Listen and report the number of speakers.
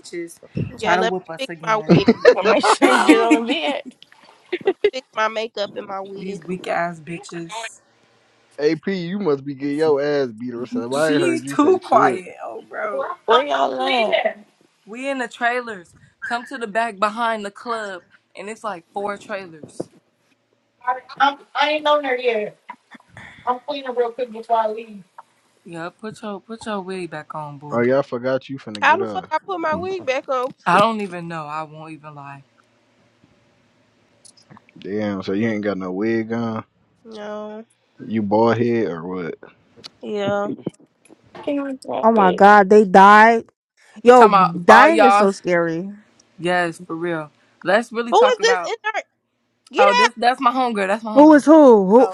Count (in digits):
6